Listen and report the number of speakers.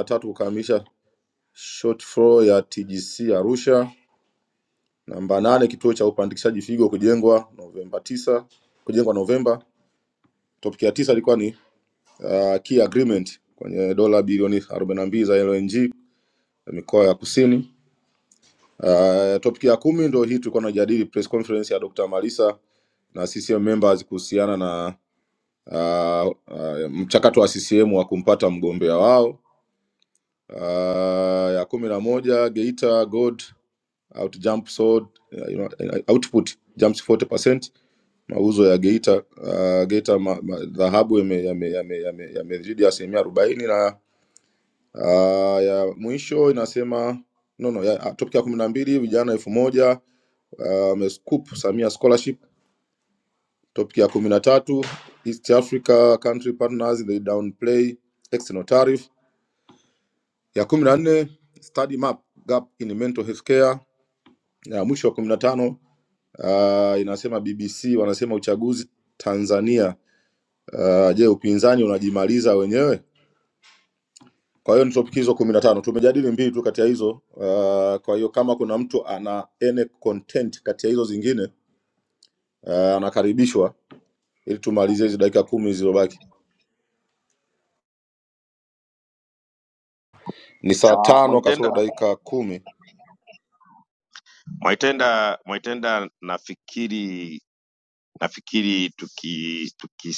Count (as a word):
two